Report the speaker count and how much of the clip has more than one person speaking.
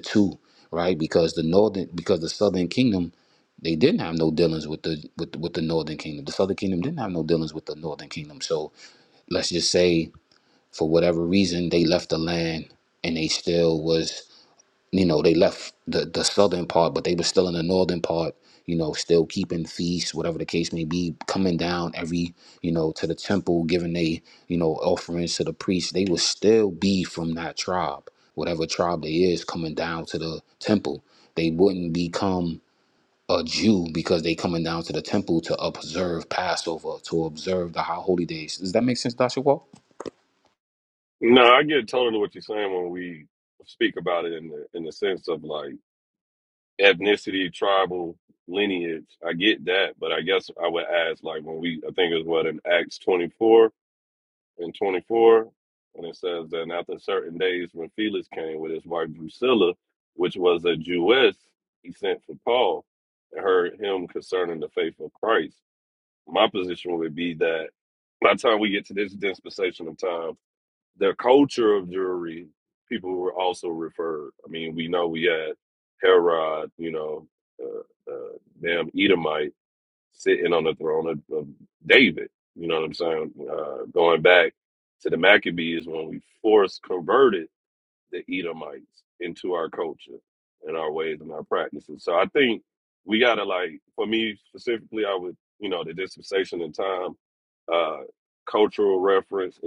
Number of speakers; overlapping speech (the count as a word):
two, no overlap